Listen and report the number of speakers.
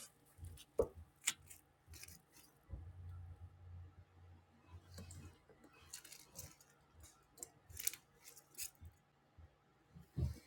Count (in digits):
0